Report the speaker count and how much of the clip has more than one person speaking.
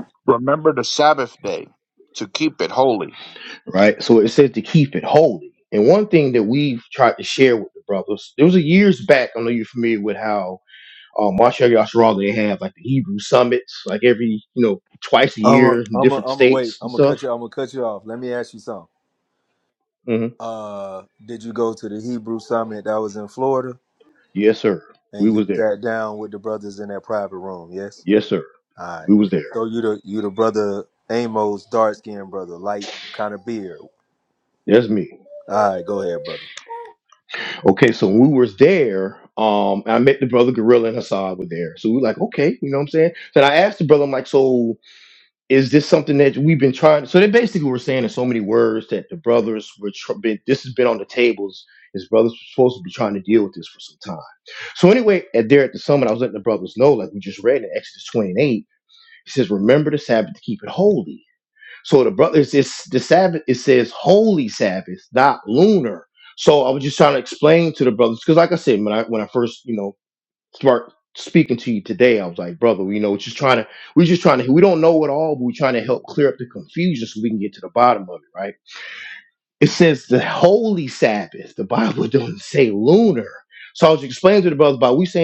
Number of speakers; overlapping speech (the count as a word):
three, about 3%